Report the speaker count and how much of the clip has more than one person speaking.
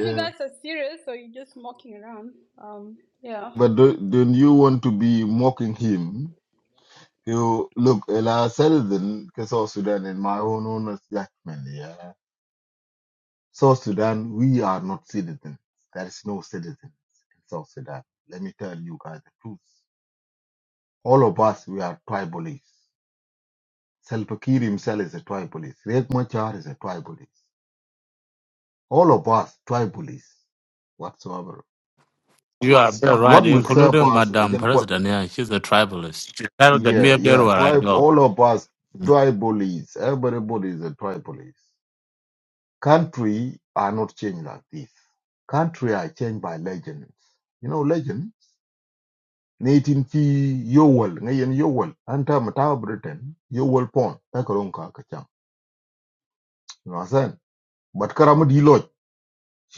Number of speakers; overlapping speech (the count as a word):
three, about 5%